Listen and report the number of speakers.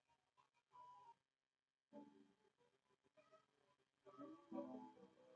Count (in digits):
0